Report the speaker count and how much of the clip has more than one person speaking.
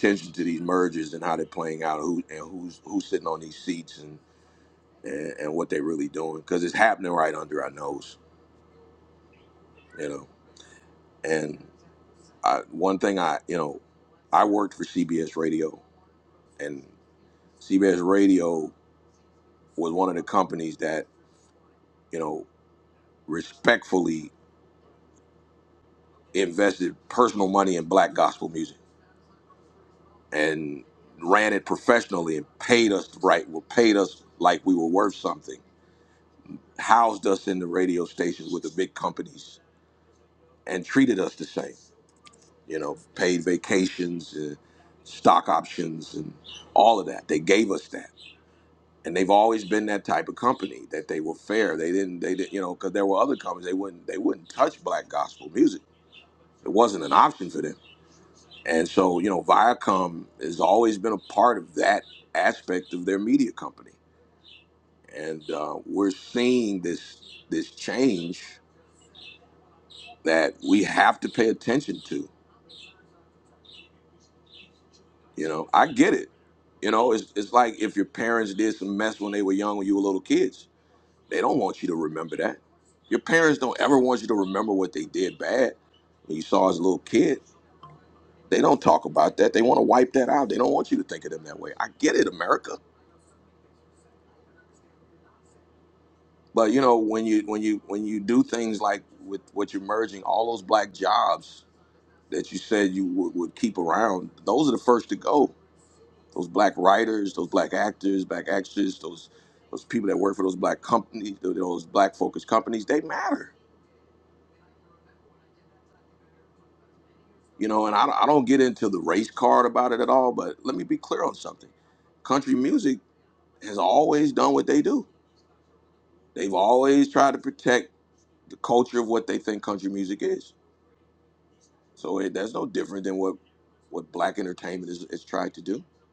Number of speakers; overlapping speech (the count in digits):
1, no overlap